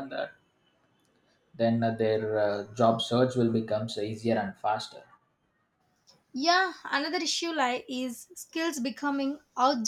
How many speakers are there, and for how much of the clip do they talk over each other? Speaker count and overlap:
2, no overlap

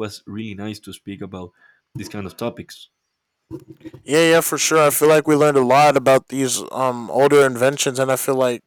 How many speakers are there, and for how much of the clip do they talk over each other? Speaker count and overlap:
2, no overlap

